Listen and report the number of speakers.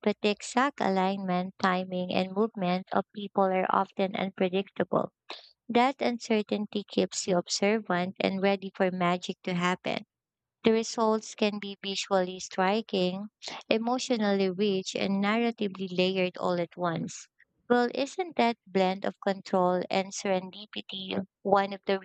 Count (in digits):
1